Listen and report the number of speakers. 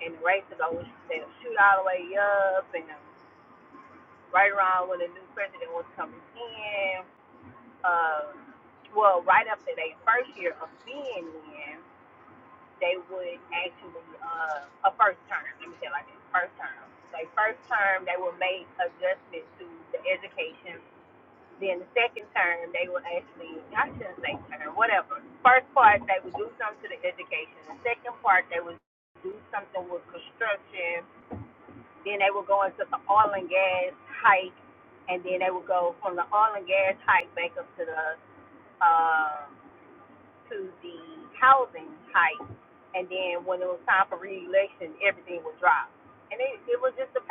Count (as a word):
one